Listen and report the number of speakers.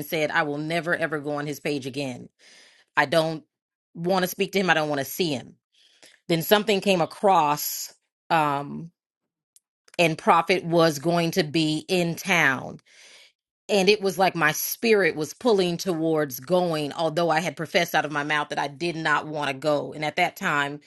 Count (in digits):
1